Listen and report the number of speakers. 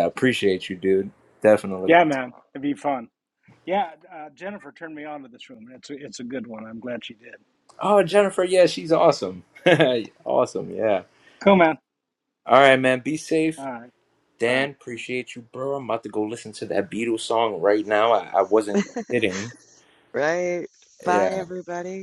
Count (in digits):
3